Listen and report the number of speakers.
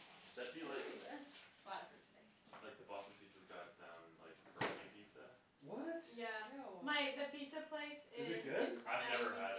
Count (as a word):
four